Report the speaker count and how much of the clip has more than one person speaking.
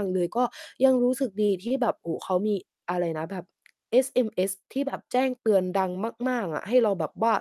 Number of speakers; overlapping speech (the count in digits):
1, no overlap